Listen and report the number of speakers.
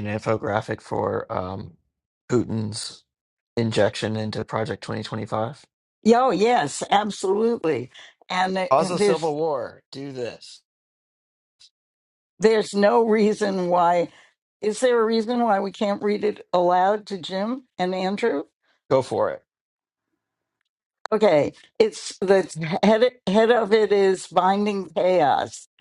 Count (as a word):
two